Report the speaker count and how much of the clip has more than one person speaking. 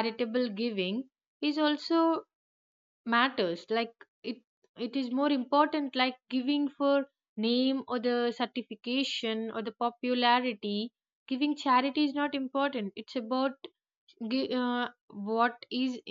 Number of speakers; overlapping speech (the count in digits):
1, no overlap